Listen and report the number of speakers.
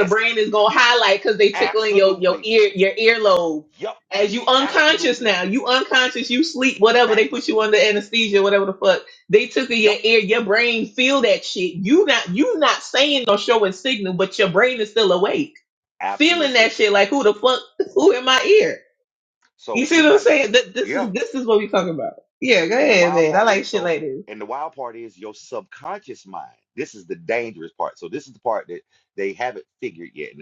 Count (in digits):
2